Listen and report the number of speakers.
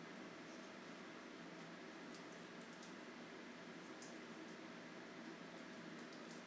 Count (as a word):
zero